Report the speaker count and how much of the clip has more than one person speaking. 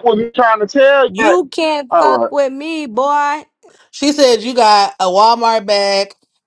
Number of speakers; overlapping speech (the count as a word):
three, about 11%